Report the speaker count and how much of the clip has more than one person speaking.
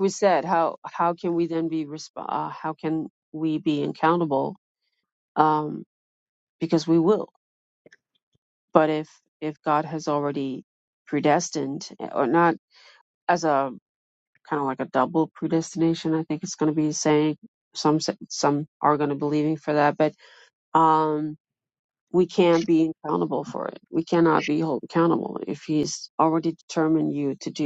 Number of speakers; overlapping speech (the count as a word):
one, no overlap